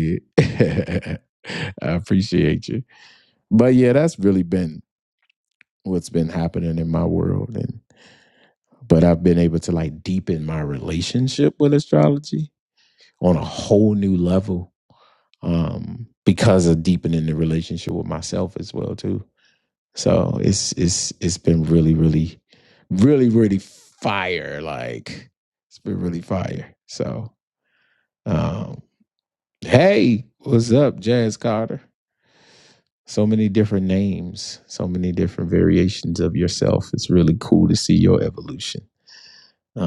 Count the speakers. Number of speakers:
one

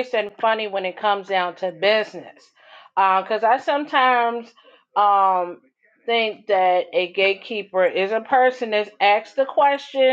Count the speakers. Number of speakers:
one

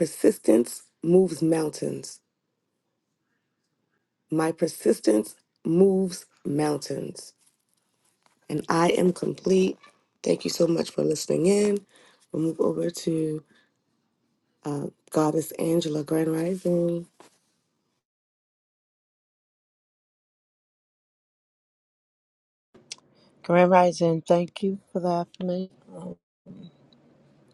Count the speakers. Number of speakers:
two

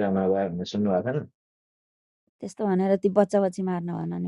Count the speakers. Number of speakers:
two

